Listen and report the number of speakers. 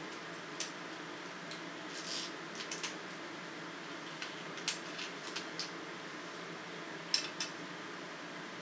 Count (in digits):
0